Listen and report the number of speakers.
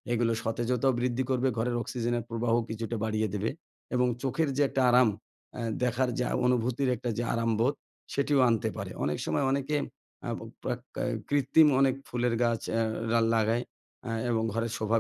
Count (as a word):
one